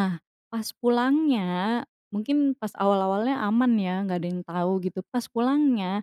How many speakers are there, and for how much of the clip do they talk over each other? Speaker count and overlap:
one, no overlap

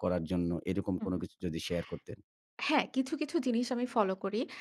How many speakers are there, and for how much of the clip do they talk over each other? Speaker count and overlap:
two, about 2%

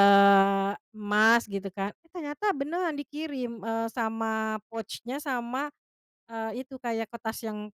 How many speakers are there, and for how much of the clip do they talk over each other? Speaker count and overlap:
one, no overlap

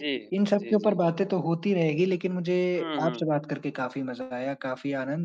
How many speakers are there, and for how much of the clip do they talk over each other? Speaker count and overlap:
two, about 13%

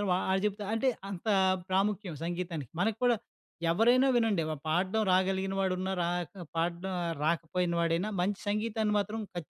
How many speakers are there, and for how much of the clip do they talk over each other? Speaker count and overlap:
one, no overlap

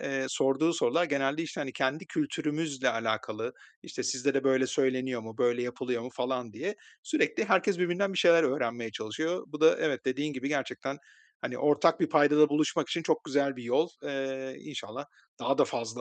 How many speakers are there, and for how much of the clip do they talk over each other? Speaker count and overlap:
one, no overlap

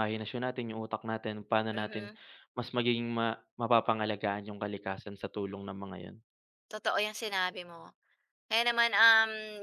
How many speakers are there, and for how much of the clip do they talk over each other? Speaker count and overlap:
two, about 4%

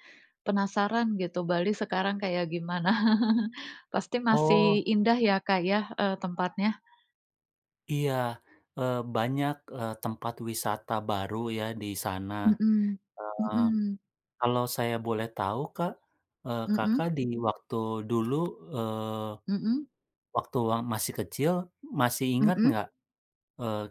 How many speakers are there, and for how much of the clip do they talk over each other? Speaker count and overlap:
two, about 6%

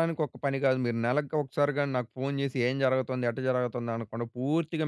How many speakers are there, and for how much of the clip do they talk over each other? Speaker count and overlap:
one, no overlap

